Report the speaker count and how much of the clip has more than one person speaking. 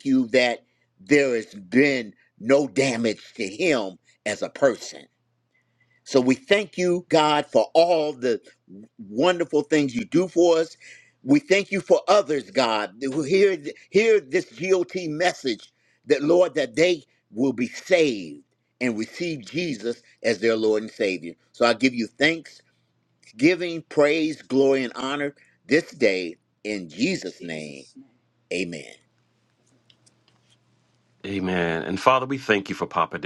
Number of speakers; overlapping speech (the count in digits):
2, no overlap